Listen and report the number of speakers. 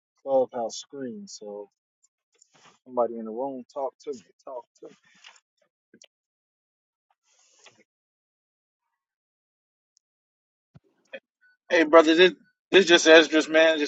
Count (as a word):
two